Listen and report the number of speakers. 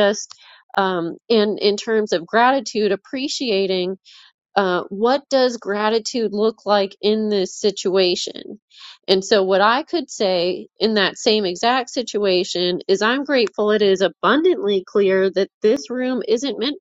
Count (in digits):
1